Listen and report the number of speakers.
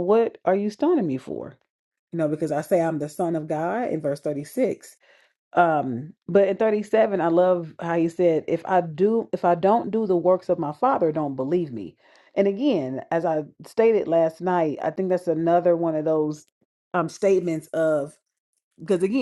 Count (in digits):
1